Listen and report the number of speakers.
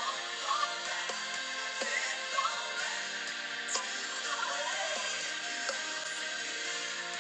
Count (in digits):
0